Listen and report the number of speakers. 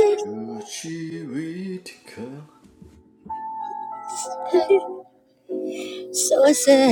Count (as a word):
one